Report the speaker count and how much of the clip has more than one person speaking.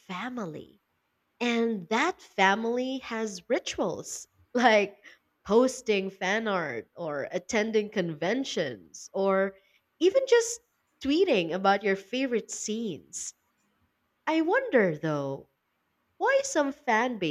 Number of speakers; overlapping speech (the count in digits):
1, no overlap